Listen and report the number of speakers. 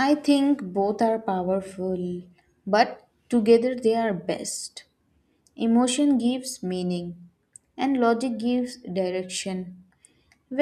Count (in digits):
1